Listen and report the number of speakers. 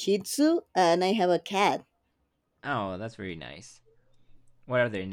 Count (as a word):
two